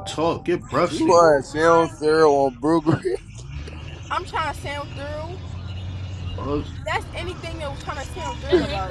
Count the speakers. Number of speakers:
three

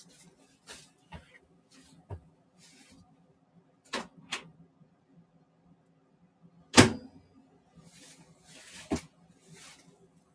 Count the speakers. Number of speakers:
zero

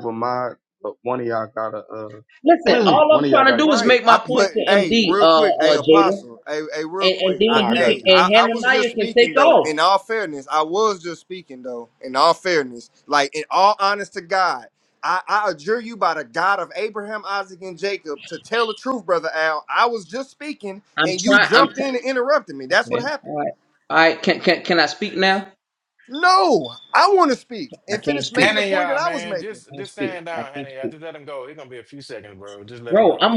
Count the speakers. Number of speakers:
four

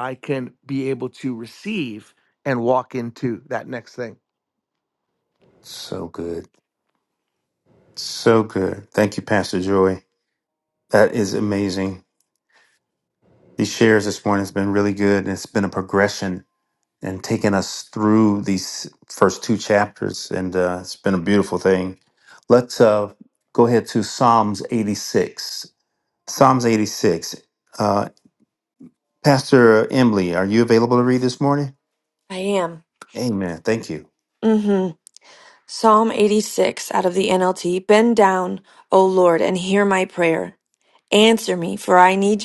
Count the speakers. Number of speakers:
three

